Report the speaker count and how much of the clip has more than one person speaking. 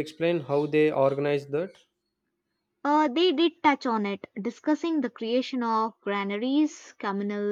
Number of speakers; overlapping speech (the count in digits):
2, no overlap